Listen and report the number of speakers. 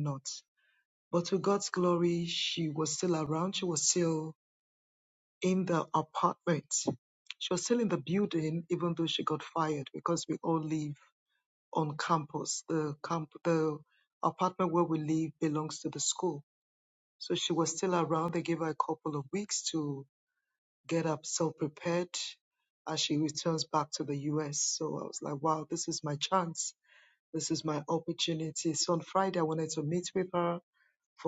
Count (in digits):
1